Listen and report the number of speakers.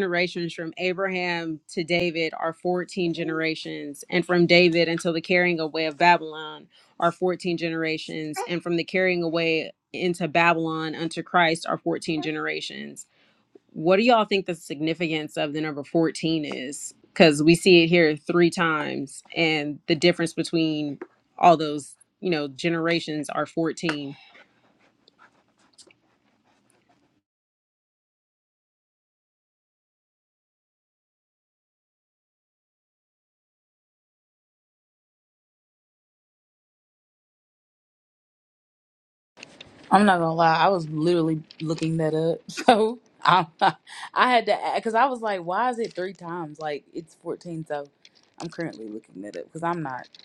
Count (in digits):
2